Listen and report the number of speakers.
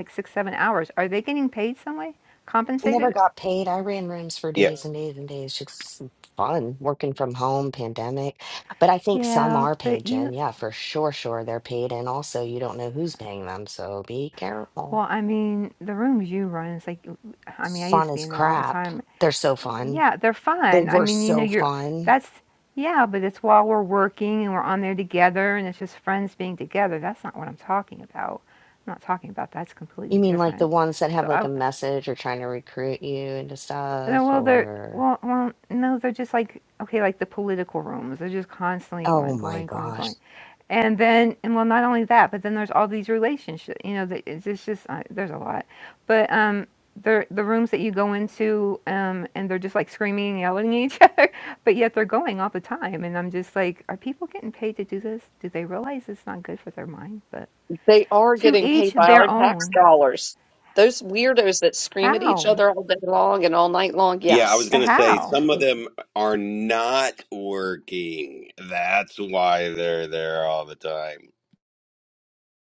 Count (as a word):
four